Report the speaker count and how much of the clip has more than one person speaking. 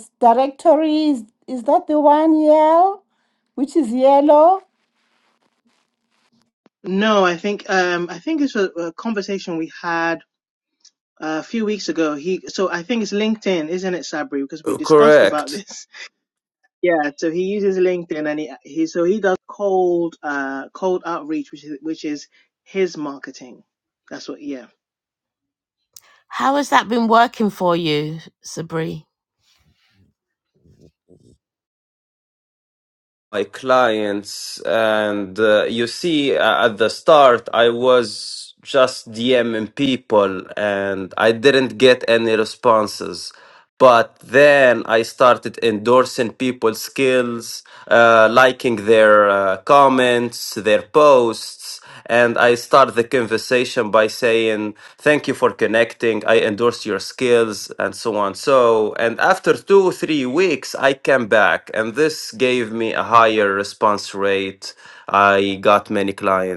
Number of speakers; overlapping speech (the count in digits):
4, about 1%